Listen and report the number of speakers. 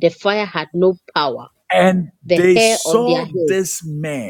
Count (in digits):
2